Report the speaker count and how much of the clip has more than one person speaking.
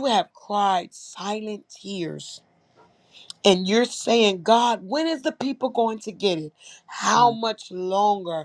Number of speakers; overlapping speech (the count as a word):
one, no overlap